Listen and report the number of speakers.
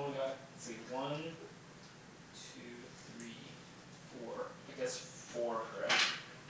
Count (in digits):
1